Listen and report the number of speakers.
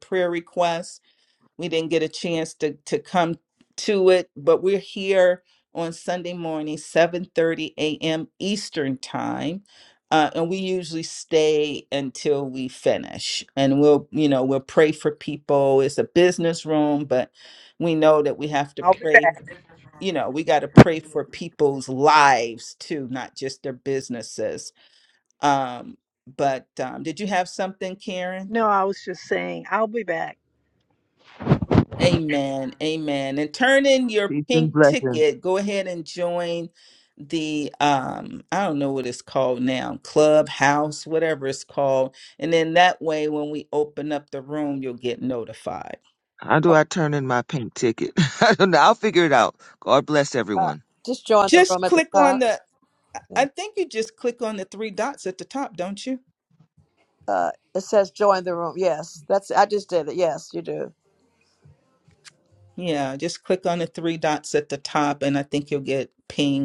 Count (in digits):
4